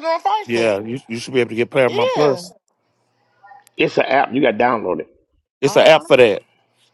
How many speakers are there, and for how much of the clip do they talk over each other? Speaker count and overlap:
three, about 17%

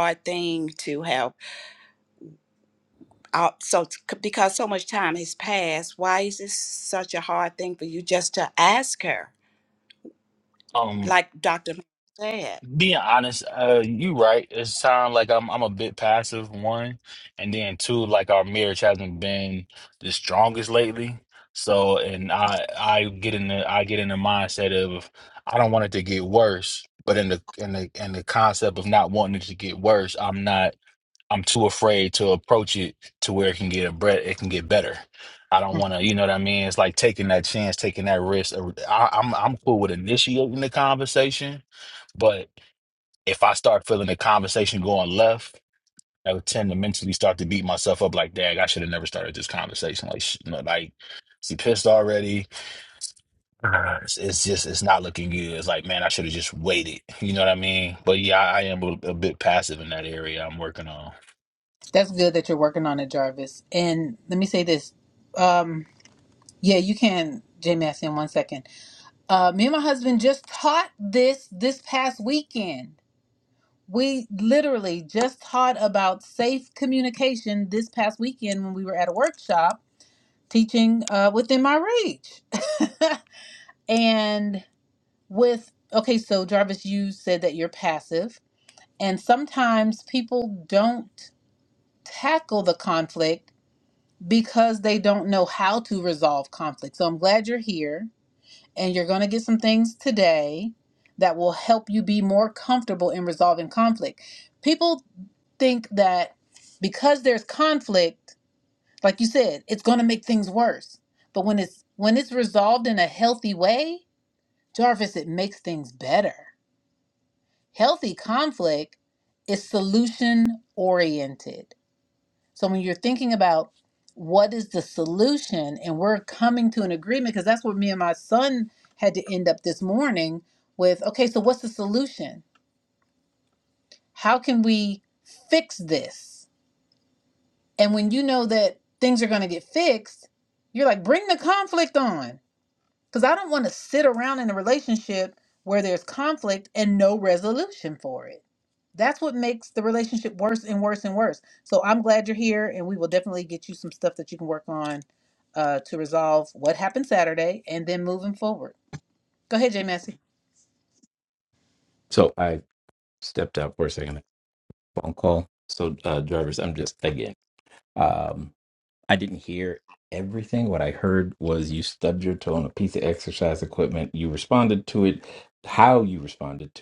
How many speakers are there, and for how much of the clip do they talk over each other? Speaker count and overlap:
four, under 1%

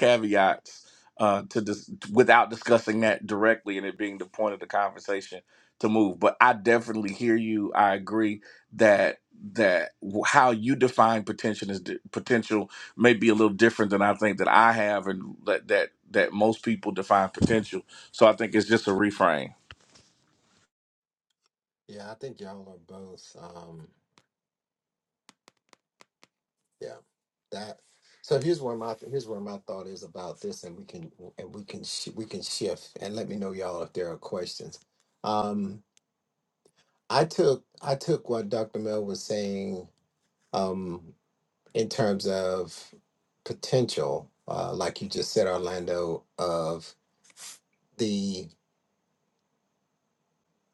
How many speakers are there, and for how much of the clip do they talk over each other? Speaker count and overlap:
two, no overlap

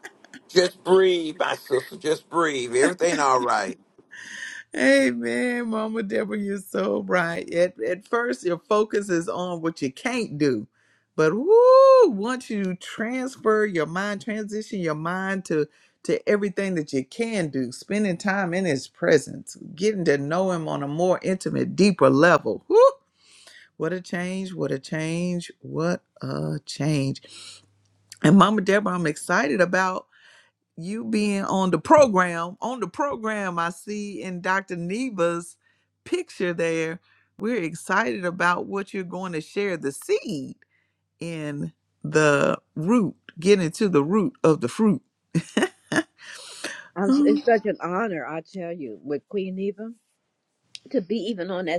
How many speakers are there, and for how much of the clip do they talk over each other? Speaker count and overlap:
three, about 1%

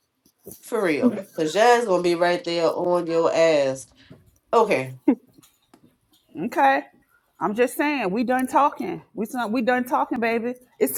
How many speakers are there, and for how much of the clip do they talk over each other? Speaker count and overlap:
two, no overlap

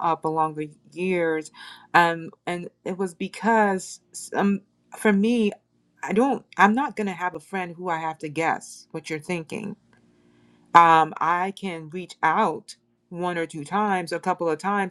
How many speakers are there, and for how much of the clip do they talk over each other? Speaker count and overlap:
one, no overlap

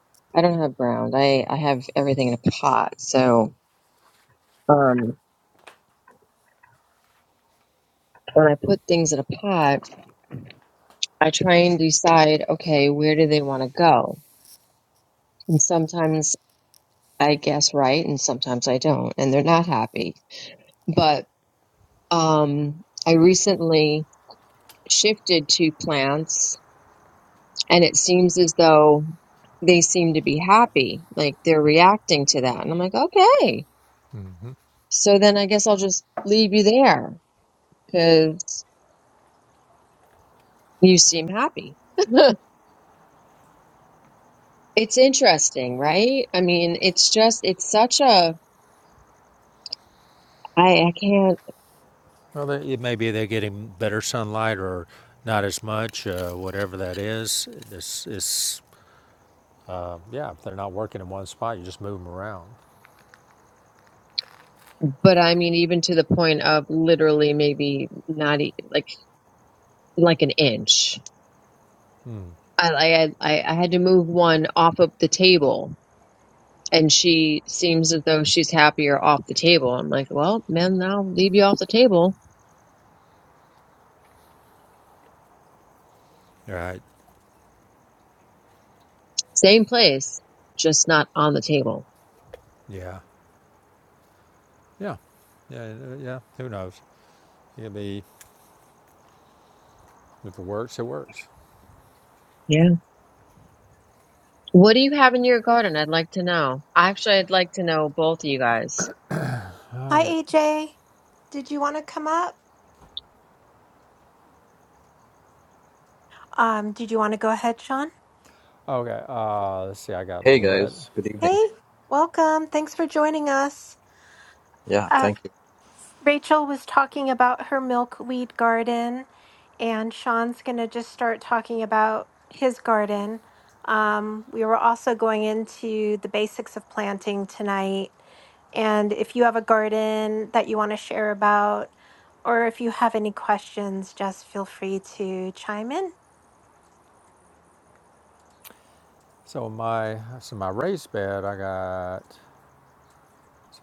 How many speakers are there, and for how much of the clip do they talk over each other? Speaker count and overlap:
four, about 1%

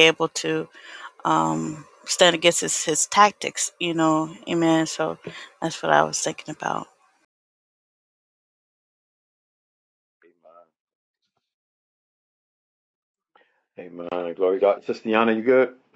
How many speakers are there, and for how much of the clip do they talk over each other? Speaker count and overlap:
two, no overlap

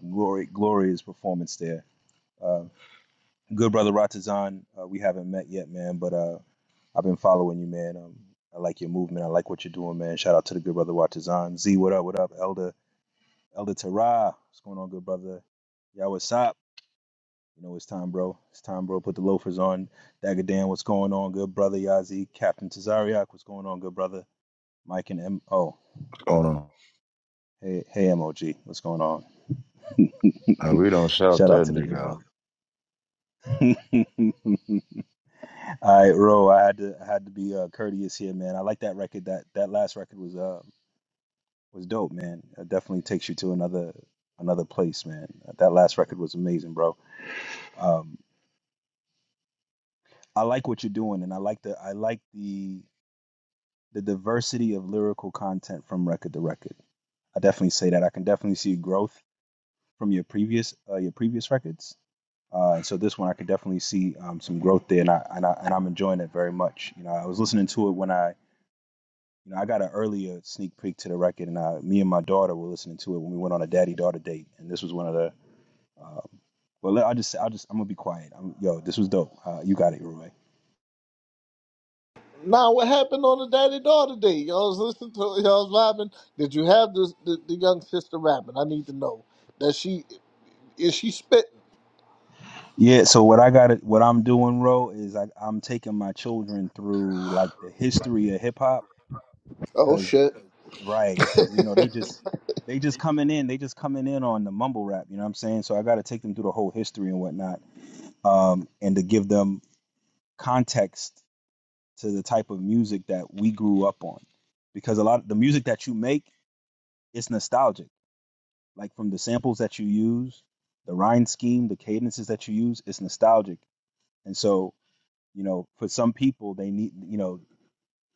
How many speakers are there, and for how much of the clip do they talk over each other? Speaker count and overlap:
three, about 1%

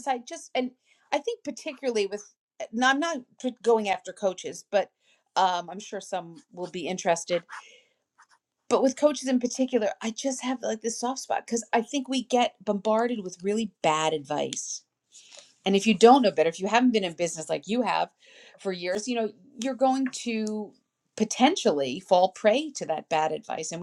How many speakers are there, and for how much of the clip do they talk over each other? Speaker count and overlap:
one, no overlap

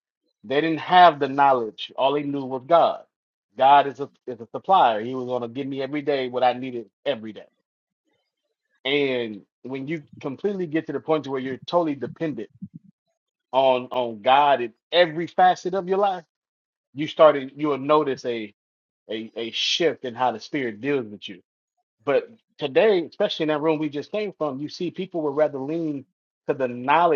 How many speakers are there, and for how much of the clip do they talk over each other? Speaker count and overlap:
one, no overlap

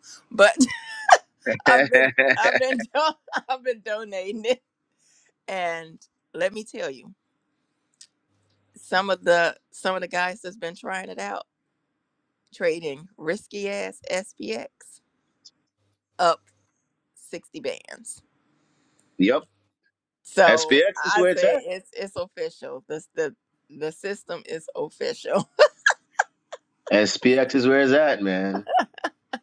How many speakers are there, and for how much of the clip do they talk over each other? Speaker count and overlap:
two, about 6%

